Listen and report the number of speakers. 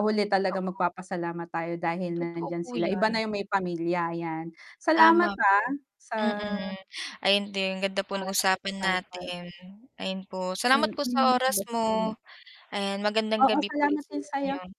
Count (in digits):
2